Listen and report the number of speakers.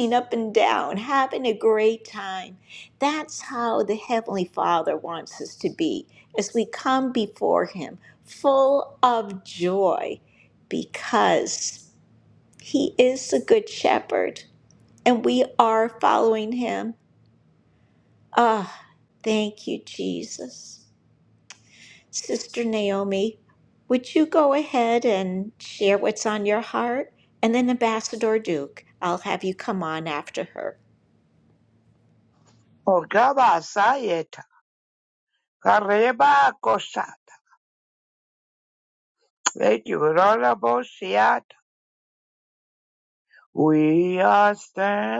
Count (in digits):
2